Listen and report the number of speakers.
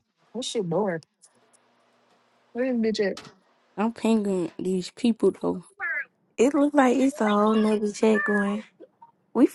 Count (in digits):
3